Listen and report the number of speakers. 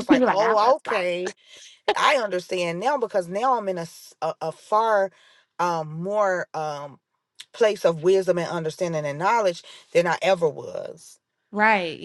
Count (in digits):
2